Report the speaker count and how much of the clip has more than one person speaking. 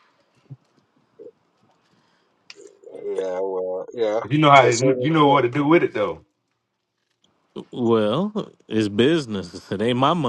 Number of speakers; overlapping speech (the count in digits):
3, about 8%